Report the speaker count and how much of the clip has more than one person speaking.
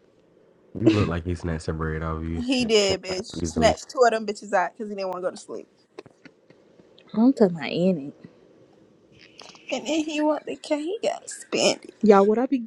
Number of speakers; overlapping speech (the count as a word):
three, about 2%